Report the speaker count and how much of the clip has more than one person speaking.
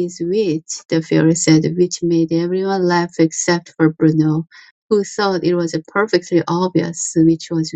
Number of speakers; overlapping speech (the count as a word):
one, no overlap